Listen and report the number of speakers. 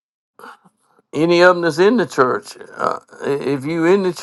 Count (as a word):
one